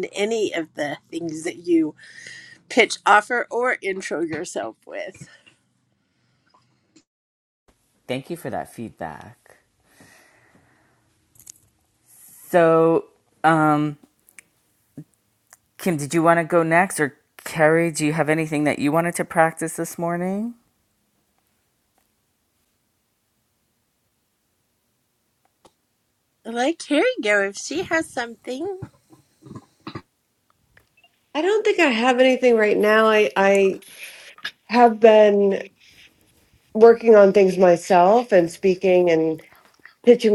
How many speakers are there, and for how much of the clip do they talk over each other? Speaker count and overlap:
3, no overlap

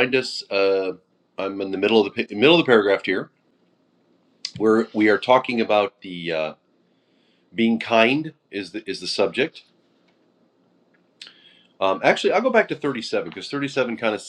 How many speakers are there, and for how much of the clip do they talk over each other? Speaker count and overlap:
1, no overlap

